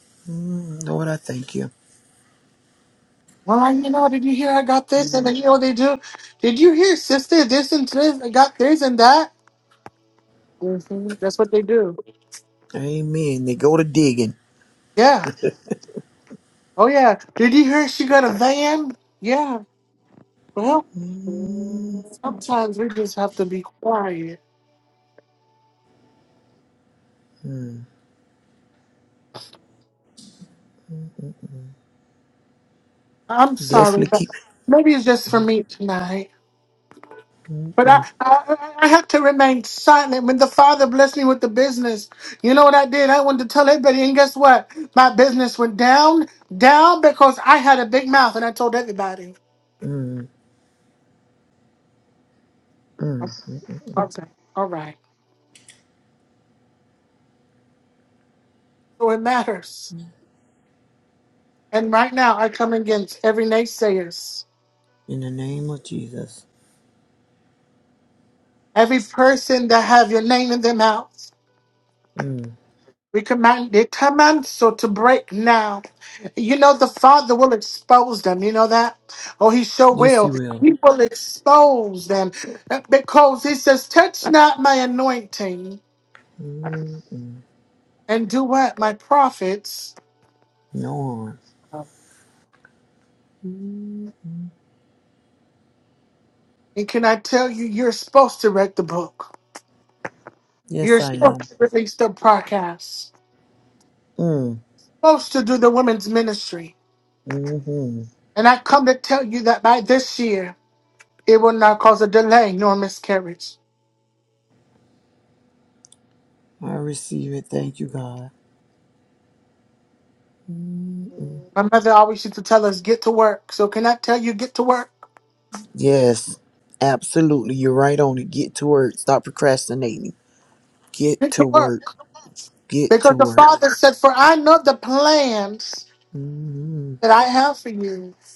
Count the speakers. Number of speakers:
two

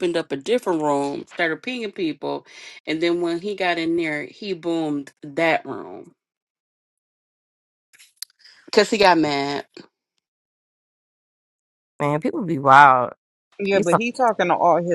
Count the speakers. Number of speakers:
three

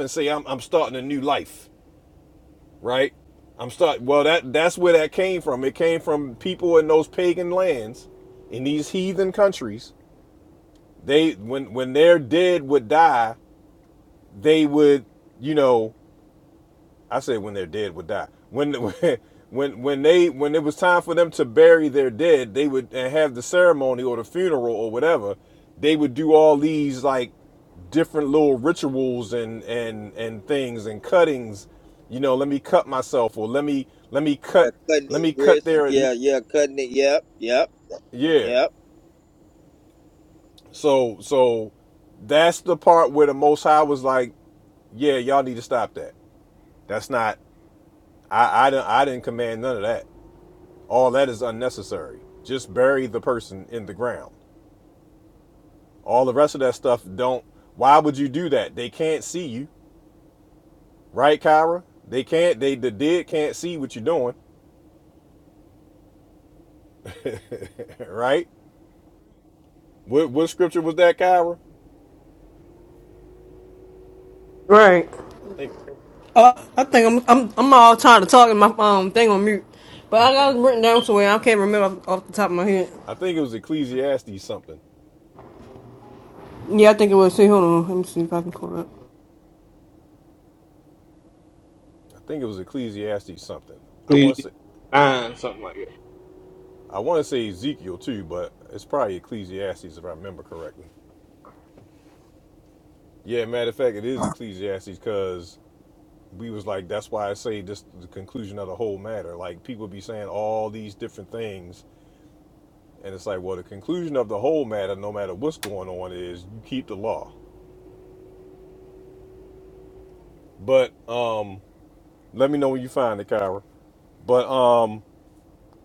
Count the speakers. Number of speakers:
four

